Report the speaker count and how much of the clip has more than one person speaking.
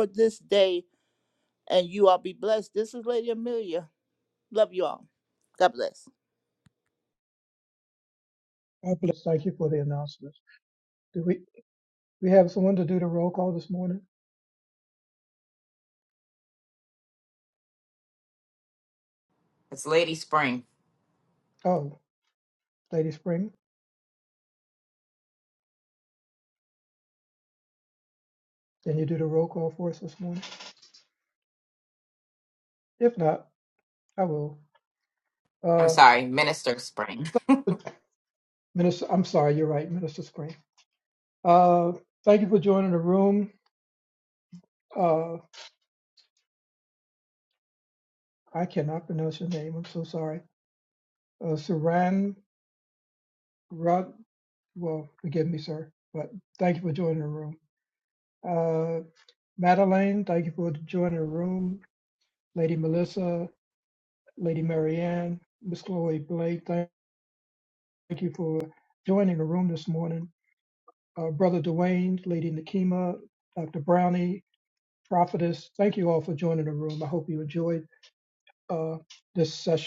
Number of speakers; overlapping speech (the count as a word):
three, under 1%